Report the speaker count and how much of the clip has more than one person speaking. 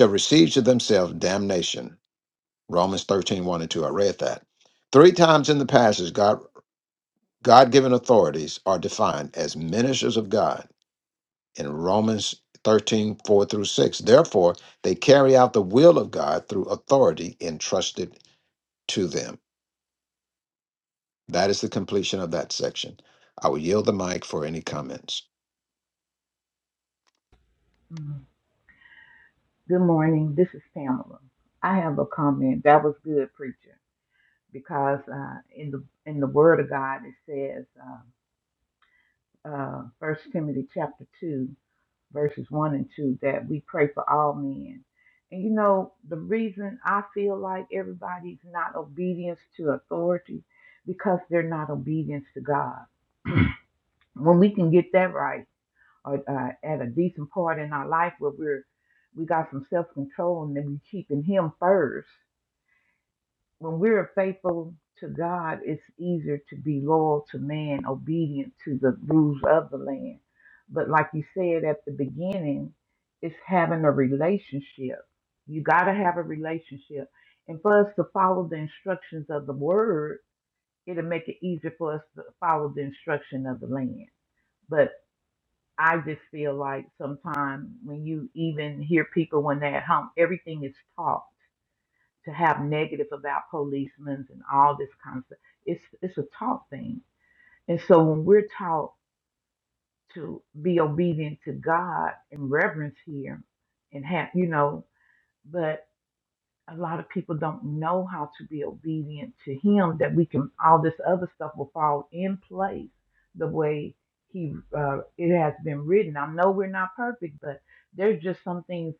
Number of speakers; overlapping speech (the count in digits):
2, no overlap